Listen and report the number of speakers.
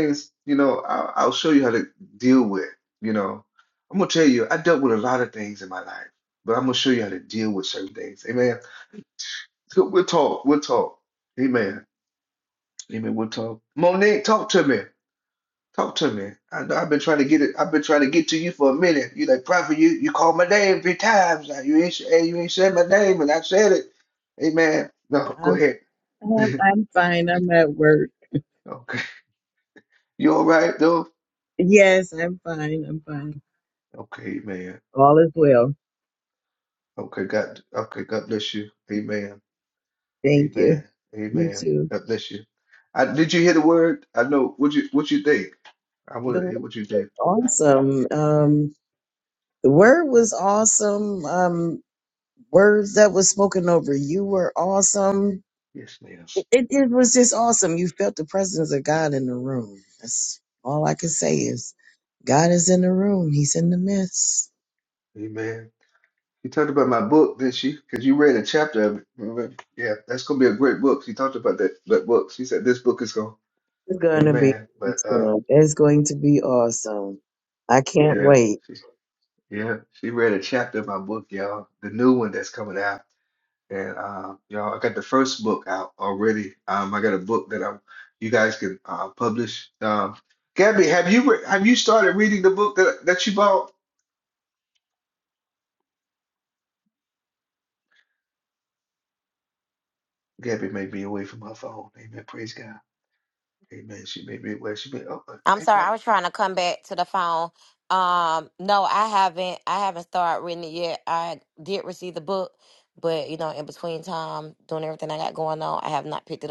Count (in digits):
3